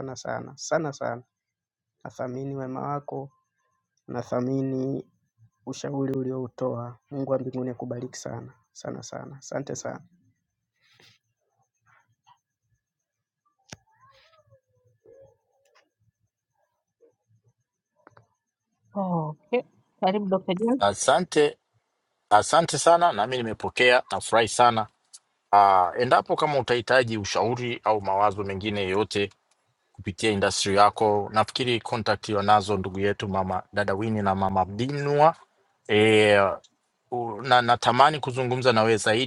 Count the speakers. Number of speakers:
three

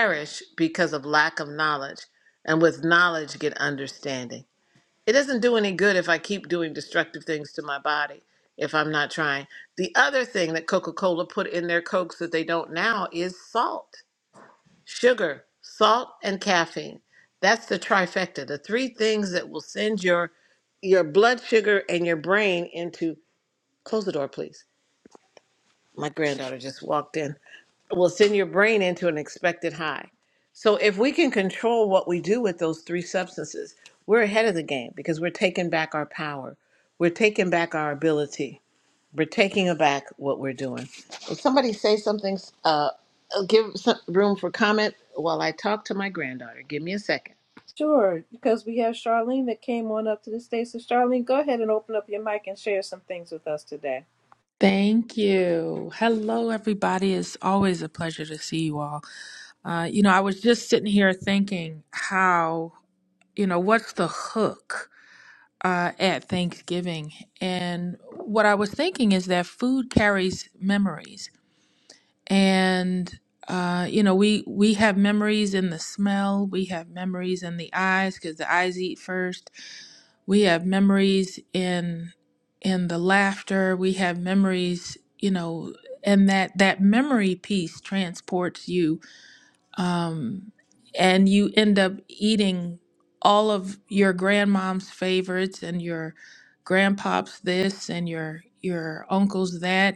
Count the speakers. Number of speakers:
three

